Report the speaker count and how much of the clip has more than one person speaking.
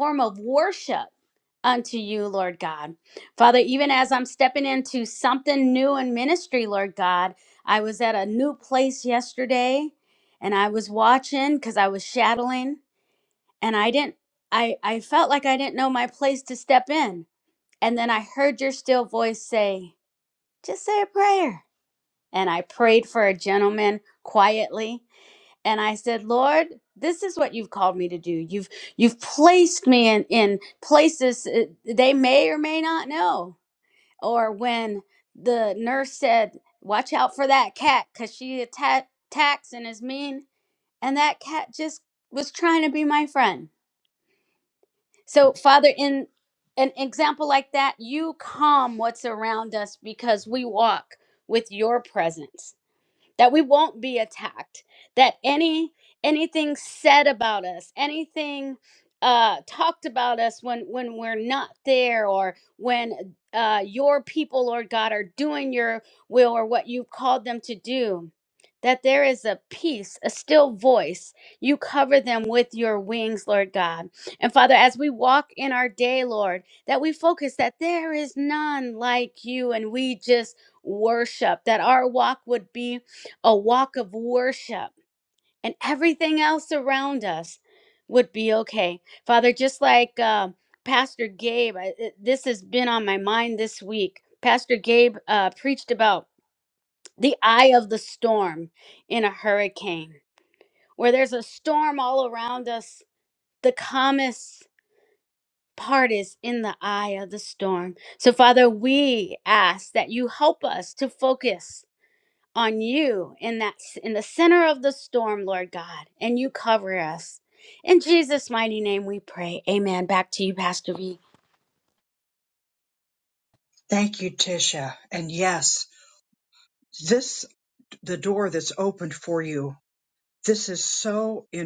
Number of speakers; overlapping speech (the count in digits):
2, no overlap